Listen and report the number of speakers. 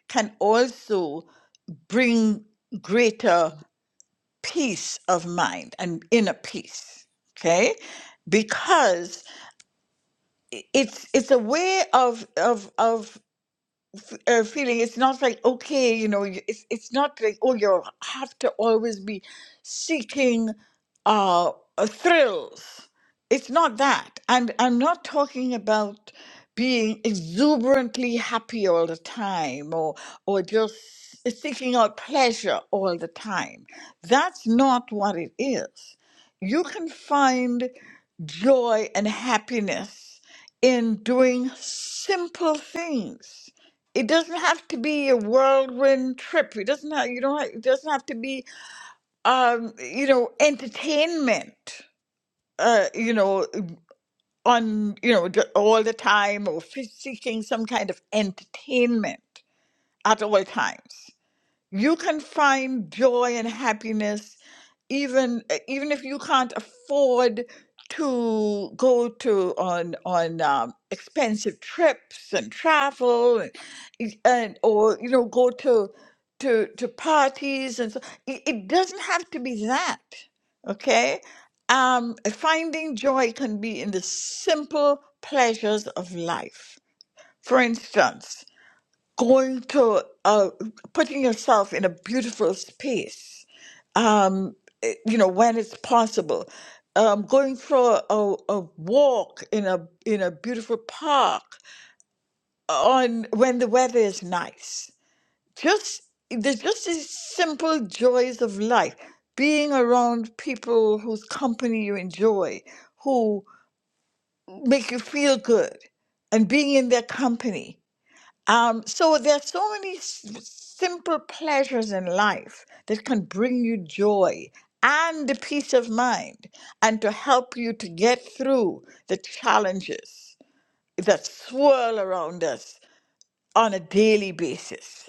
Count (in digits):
1